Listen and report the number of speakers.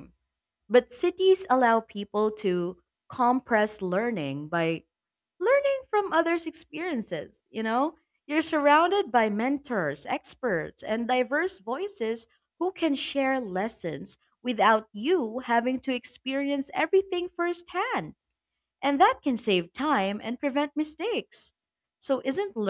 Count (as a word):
one